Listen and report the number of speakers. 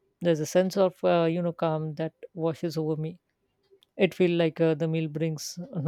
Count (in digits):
1